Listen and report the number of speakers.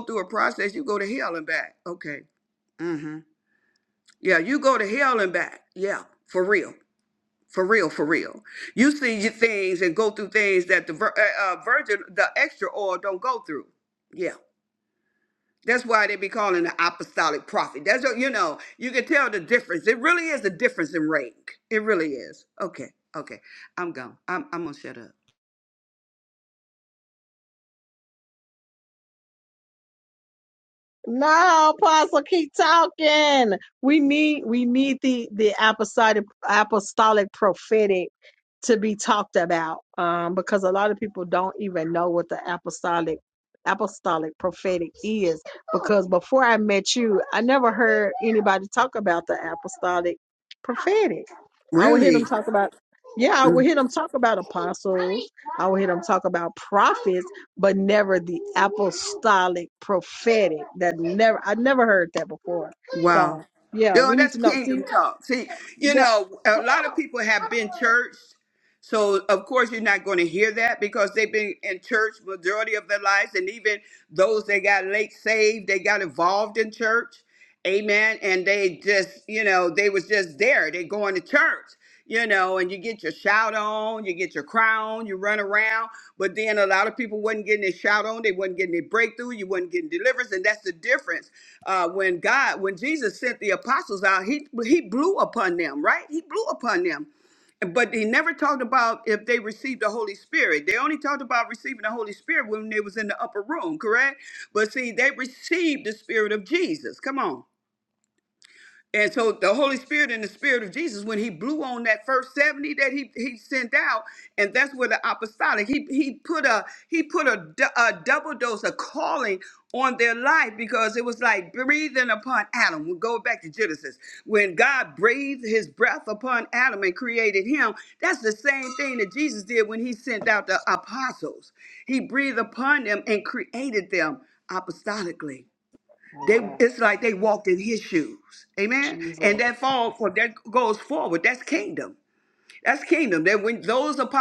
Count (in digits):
2